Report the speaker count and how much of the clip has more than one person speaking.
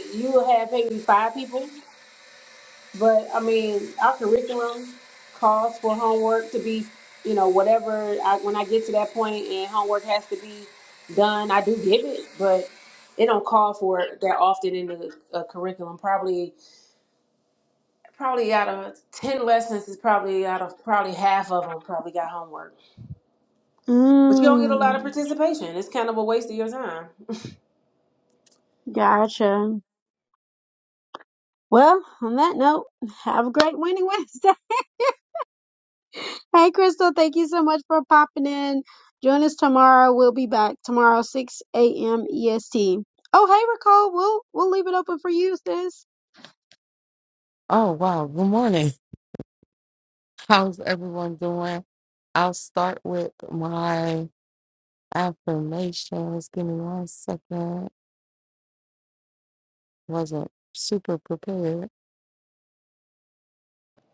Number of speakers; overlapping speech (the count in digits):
3, about 1%